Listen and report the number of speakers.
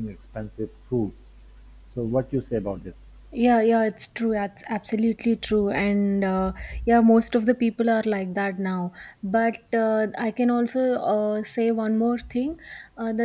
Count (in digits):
2